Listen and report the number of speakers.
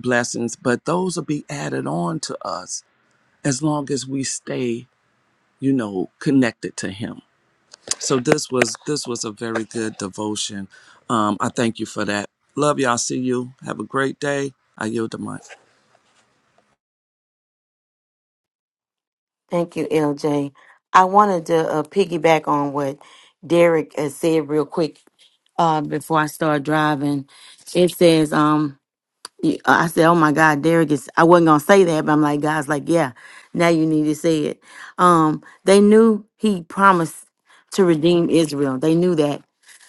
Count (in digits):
2